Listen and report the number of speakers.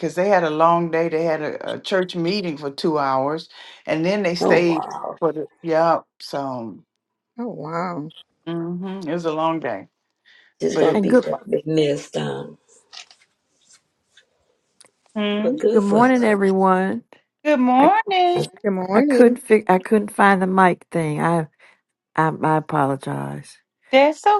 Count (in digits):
4